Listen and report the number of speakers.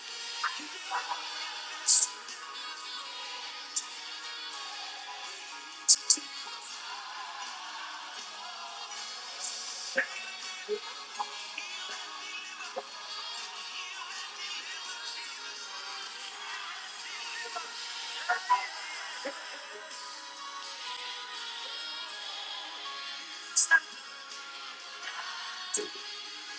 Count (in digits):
0